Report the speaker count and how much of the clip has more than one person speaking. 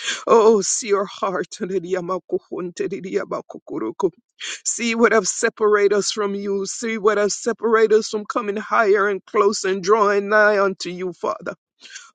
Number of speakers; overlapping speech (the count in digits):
1, no overlap